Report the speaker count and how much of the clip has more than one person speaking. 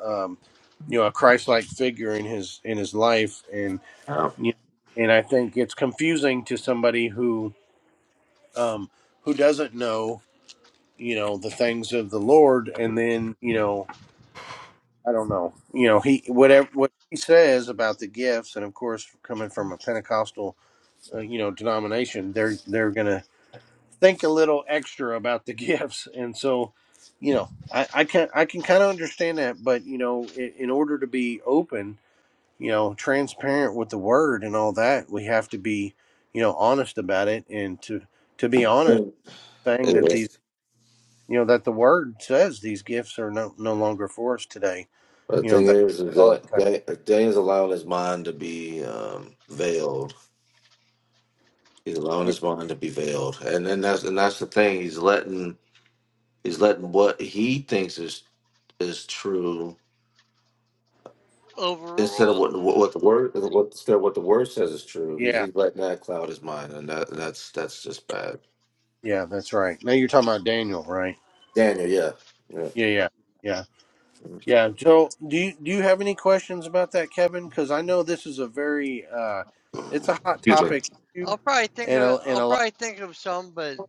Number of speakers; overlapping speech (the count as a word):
three, about 3%